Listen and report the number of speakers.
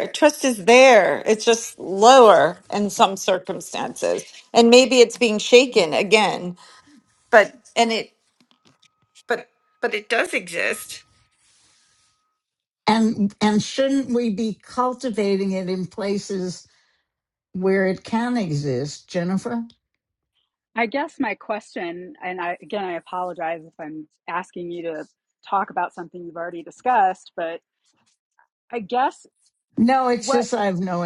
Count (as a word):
three